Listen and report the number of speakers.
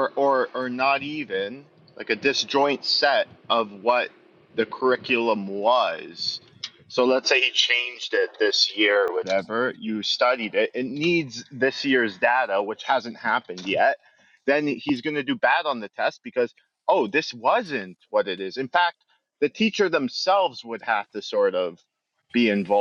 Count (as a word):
one